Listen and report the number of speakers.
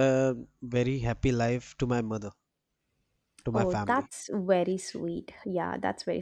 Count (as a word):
two